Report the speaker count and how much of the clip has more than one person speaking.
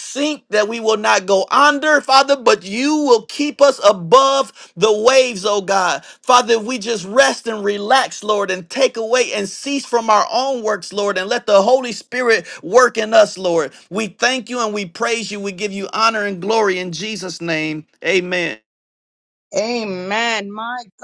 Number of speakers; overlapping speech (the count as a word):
two, no overlap